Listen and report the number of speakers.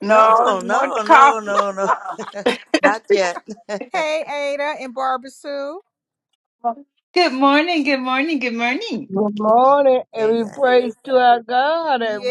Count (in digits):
4